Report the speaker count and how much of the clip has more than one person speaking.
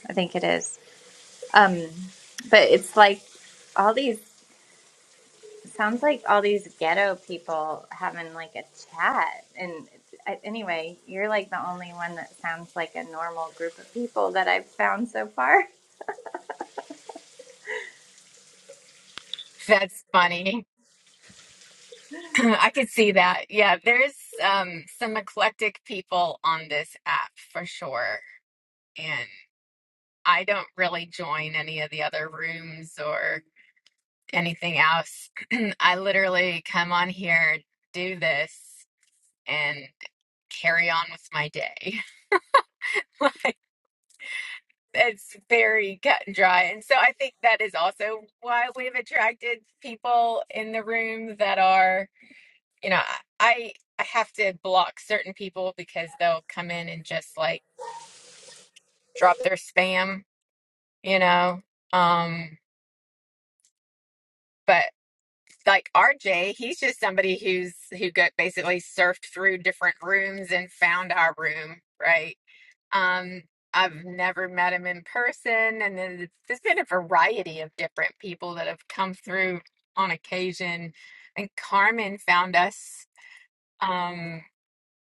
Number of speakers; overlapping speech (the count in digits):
2, no overlap